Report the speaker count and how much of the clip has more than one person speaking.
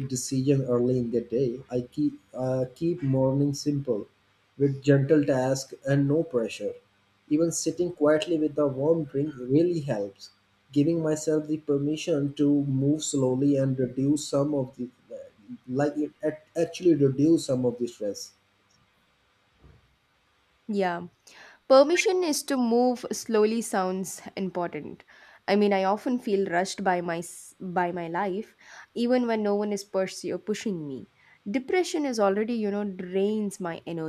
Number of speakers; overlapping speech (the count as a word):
two, no overlap